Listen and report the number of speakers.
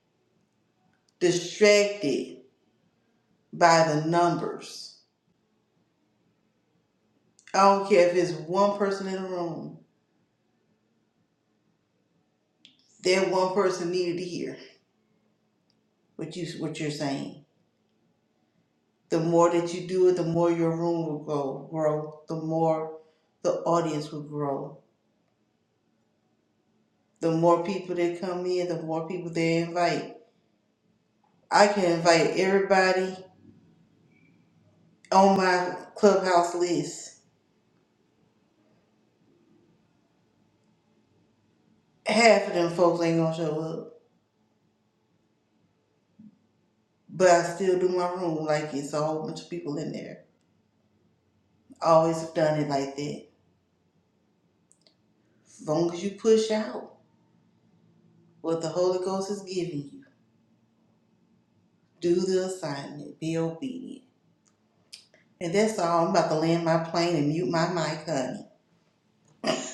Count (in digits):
1